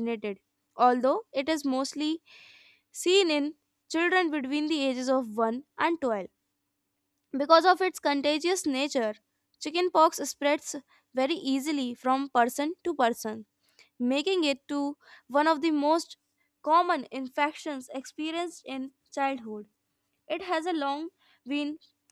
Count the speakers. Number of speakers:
1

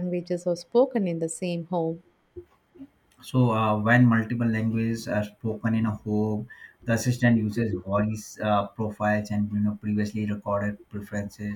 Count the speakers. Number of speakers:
2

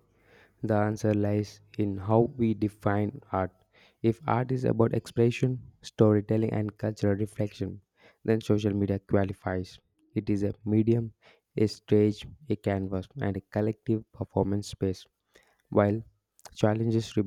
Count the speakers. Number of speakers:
1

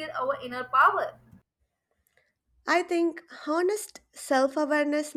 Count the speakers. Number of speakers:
2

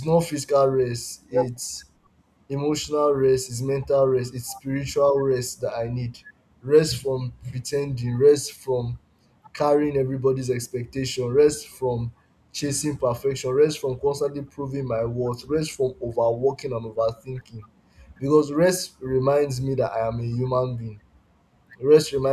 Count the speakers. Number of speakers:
1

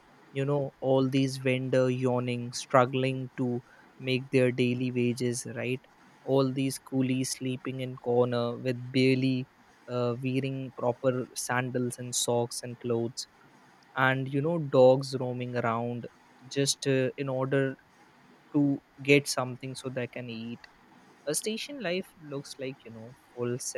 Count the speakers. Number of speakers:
1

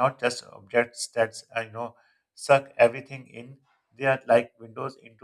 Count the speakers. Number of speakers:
1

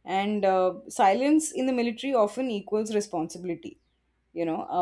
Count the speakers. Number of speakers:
1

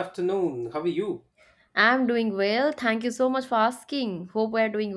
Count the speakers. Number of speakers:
2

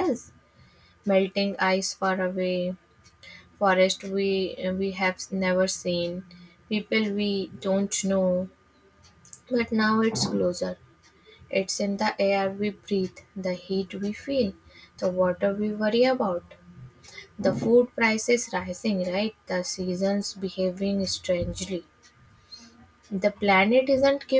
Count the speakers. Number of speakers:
1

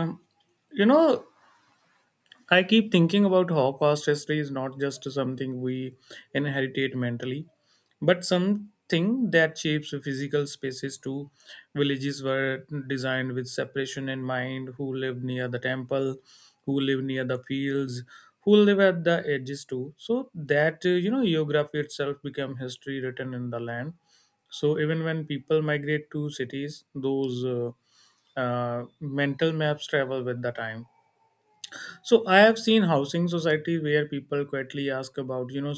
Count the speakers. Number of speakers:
1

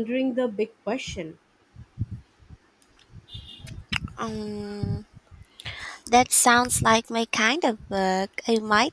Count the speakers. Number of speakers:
2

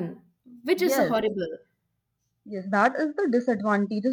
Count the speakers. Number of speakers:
2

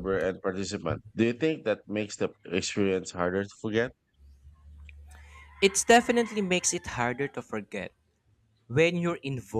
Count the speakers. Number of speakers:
2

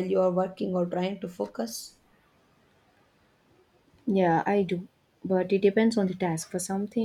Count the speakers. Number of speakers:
2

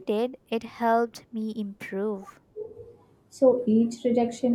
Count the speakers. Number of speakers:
2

